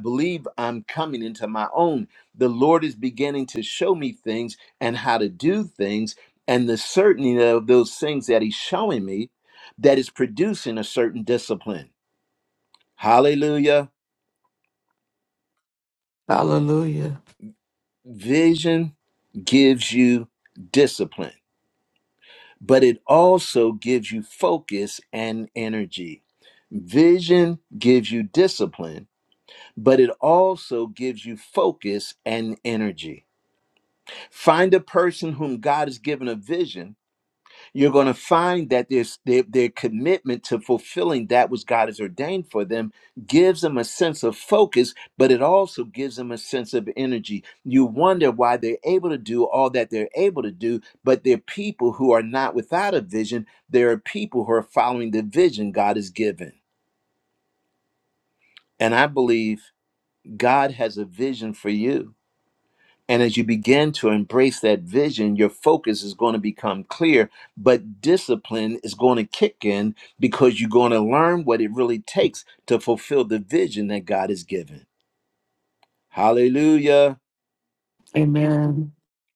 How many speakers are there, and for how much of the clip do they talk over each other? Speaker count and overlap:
2, no overlap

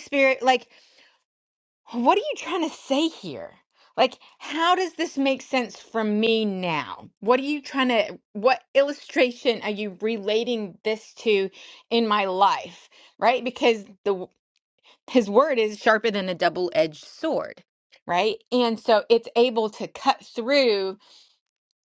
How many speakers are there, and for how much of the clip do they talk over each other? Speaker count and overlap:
1, no overlap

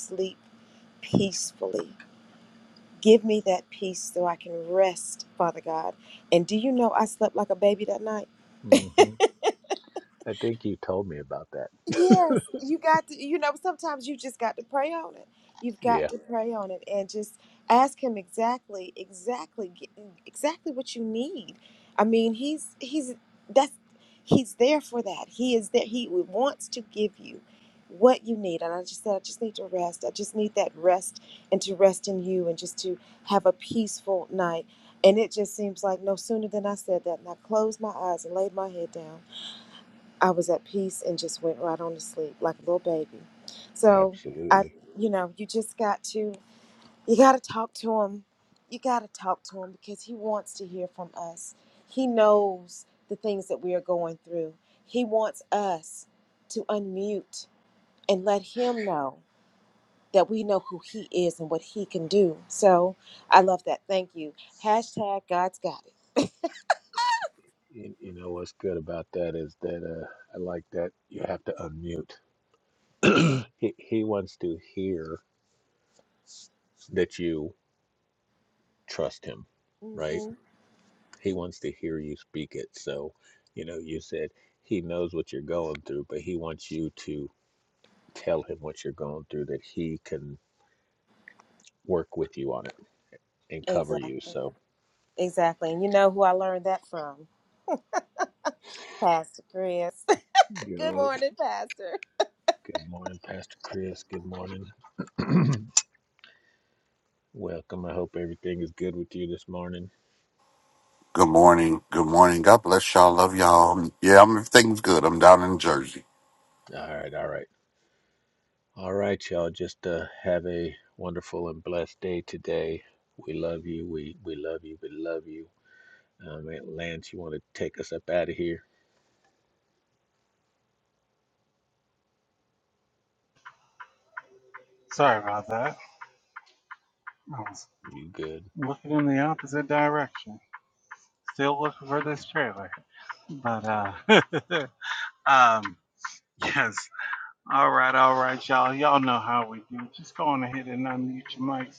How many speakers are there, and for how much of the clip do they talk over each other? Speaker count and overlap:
4, about 2%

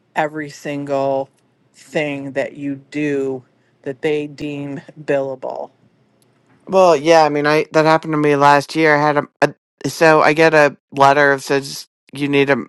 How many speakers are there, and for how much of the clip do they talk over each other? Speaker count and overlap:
2, no overlap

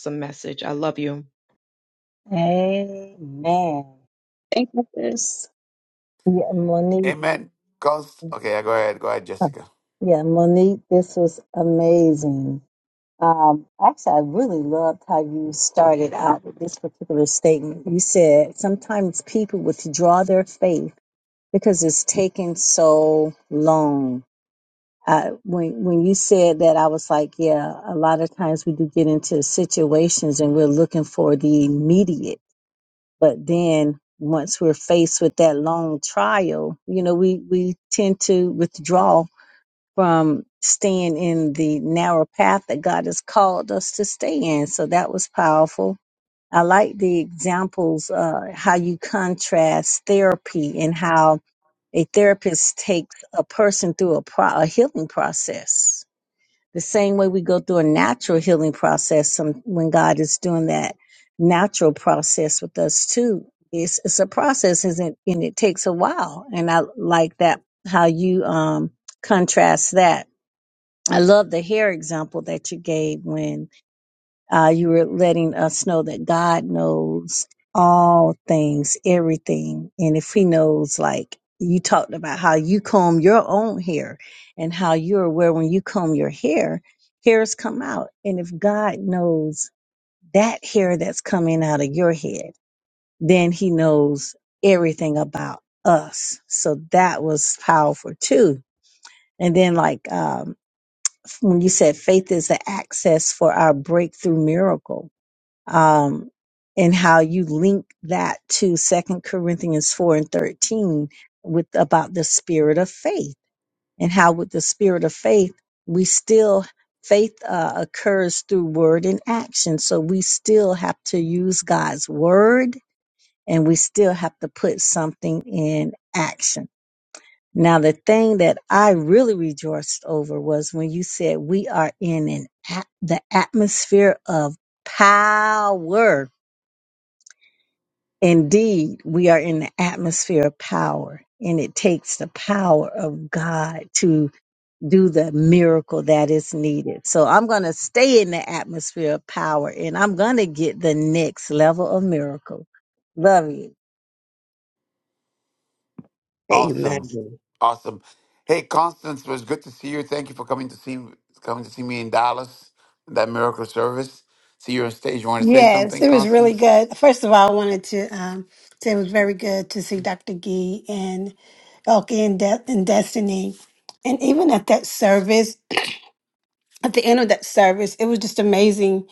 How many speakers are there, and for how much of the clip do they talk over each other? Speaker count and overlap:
5, about 1%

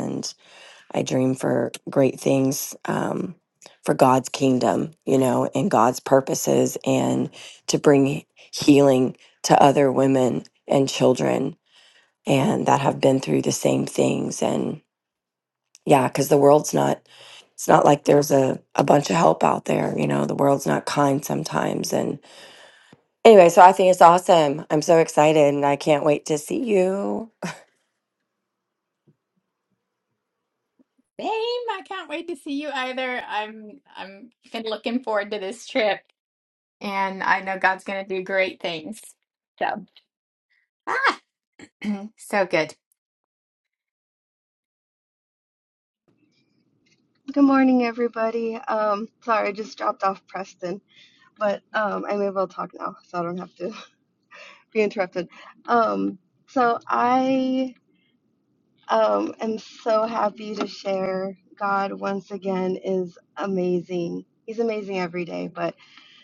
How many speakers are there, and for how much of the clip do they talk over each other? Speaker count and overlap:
3, no overlap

